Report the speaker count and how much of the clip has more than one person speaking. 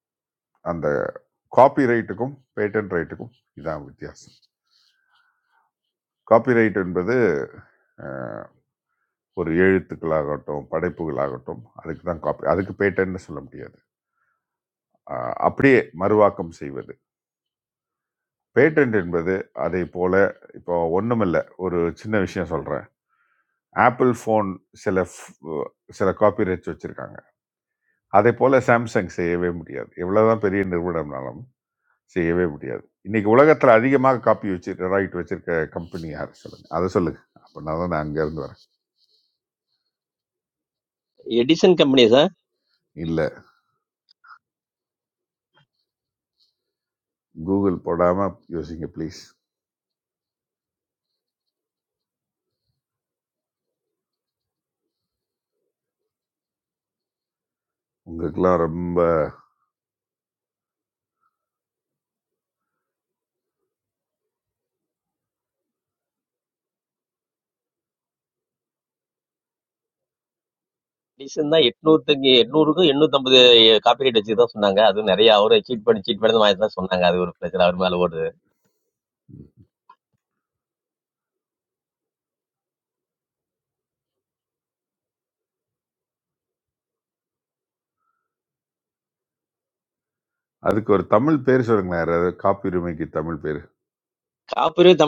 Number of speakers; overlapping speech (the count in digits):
2, no overlap